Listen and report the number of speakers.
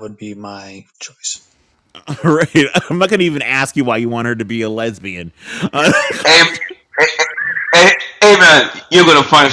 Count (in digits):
3